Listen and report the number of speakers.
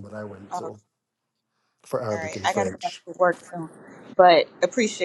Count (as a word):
two